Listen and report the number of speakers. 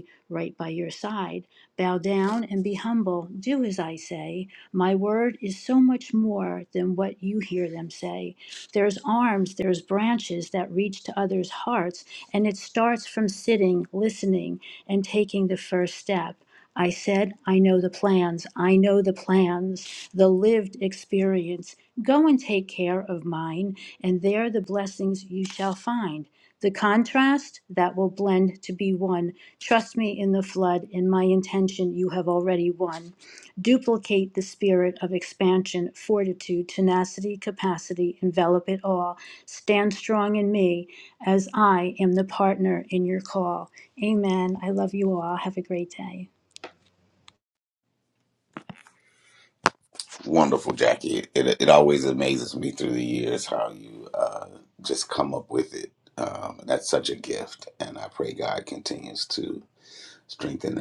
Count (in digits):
2